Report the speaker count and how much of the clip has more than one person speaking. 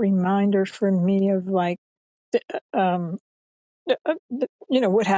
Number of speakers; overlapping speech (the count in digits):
1, no overlap